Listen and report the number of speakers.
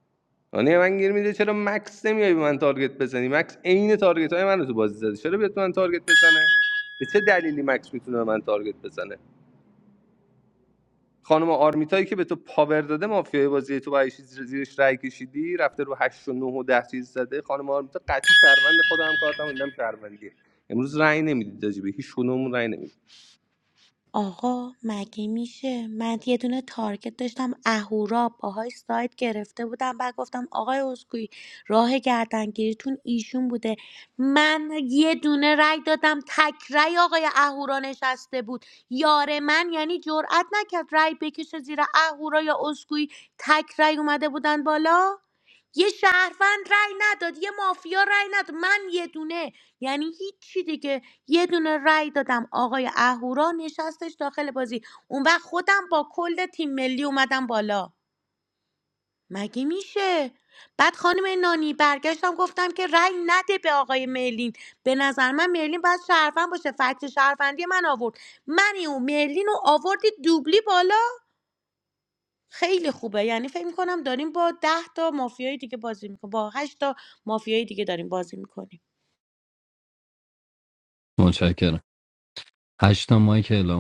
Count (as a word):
three